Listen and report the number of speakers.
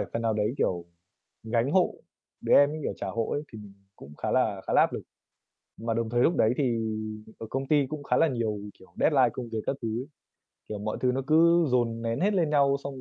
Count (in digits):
1